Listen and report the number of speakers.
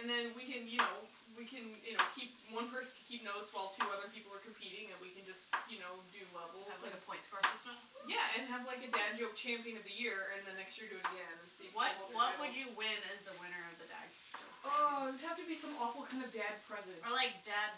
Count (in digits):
2